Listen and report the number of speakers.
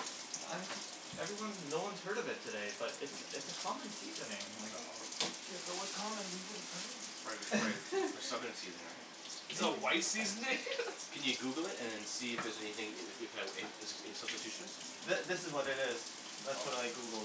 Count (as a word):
four